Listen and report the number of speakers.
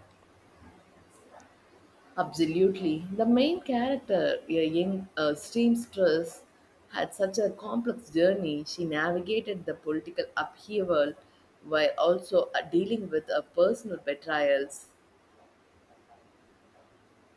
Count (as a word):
one